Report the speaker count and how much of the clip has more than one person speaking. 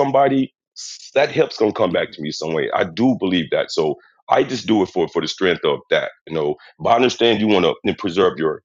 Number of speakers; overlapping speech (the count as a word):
one, no overlap